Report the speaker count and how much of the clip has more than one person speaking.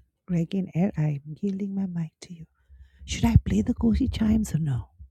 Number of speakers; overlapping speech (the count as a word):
one, no overlap